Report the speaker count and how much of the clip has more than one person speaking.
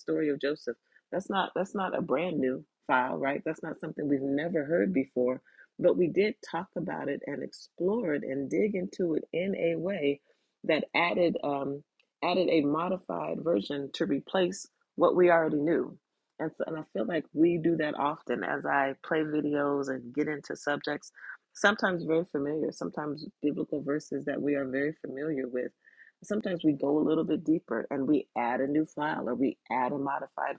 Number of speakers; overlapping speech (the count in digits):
1, no overlap